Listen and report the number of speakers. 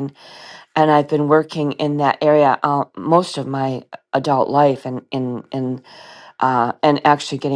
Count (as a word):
one